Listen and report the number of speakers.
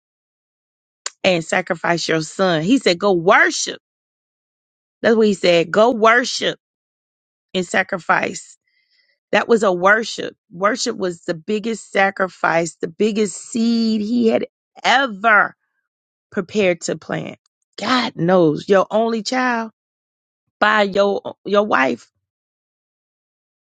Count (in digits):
1